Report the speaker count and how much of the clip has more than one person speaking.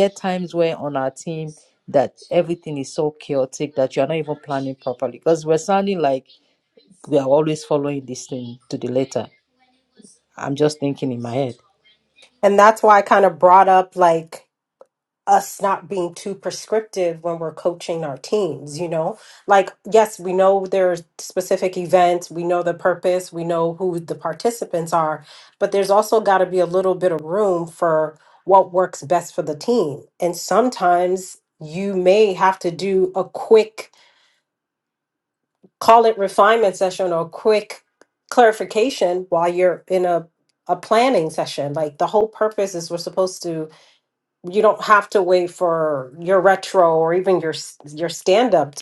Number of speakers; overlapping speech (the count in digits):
2, no overlap